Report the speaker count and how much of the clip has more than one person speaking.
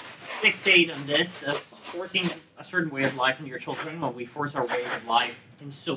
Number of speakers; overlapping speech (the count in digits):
1, no overlap